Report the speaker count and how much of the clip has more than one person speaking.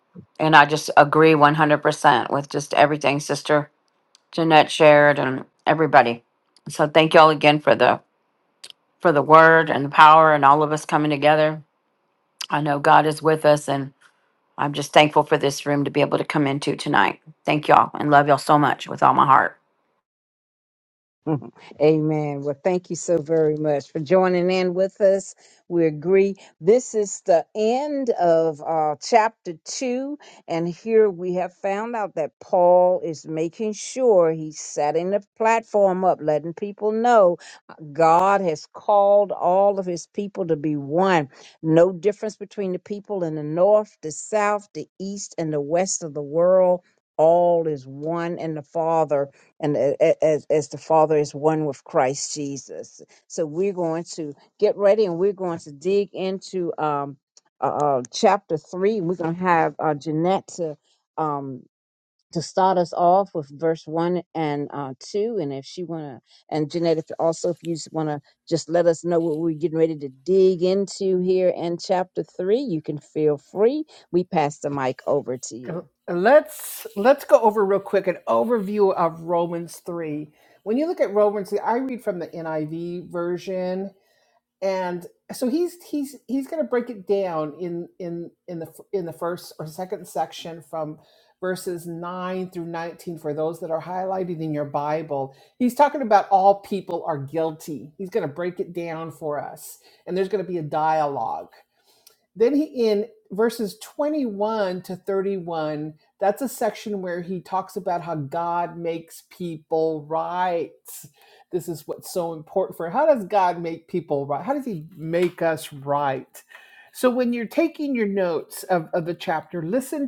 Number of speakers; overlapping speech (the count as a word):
three, no overlap